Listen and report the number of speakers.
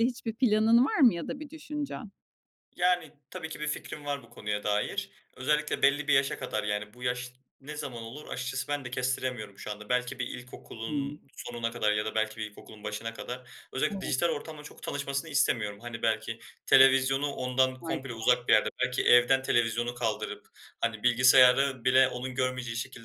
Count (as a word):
two